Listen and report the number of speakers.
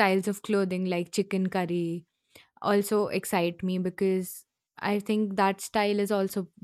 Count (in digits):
1